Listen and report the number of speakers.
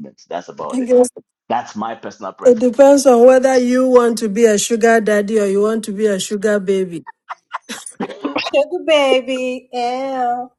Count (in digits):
3